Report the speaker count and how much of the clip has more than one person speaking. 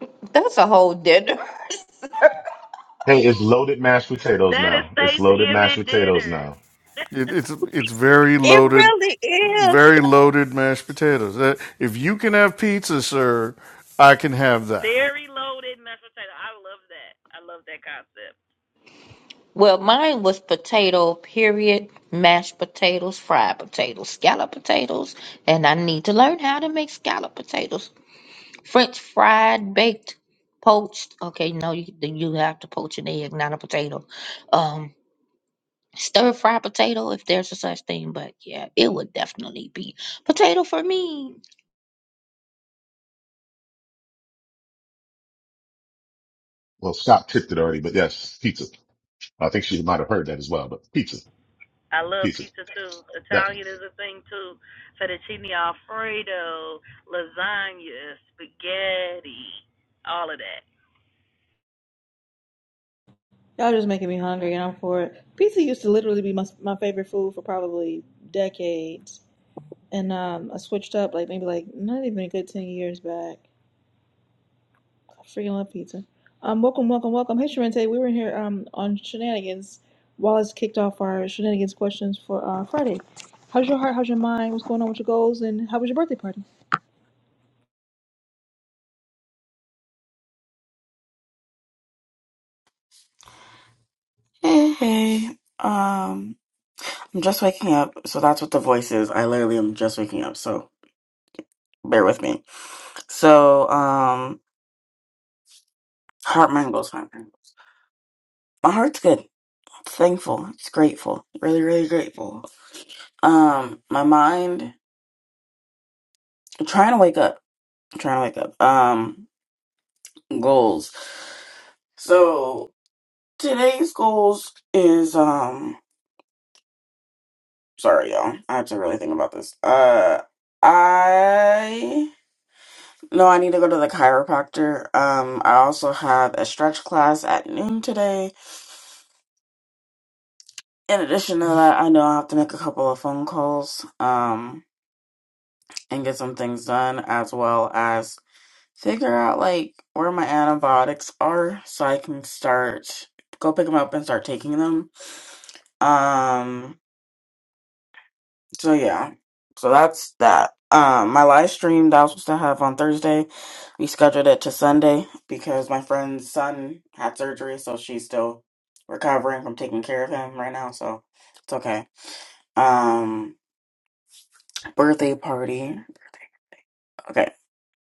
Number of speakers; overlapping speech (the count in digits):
6, about 2%